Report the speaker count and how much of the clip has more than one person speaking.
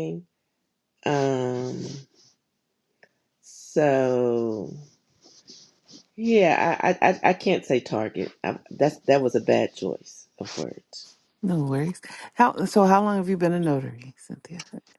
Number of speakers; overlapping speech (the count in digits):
2, no overlap